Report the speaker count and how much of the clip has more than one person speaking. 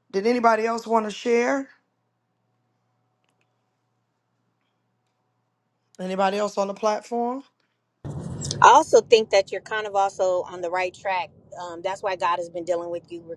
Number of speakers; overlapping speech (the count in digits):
2, no overlap